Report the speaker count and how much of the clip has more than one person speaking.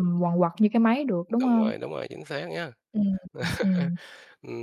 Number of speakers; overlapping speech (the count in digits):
2, about 10%